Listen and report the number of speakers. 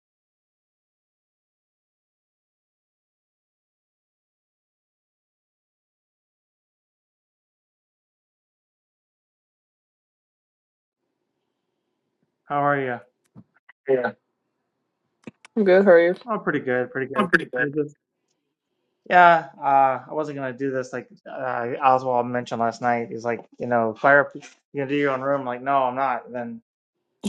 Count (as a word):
two